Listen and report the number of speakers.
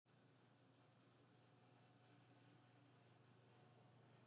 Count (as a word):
zero